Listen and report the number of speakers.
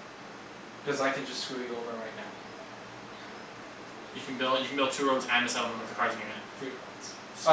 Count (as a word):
two